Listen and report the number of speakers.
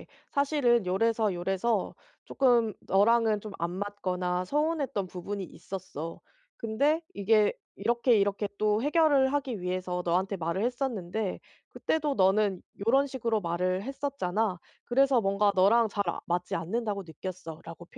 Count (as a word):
one